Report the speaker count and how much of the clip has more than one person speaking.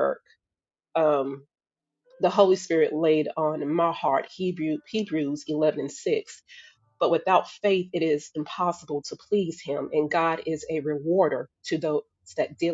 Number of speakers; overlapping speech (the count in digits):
1, no overlap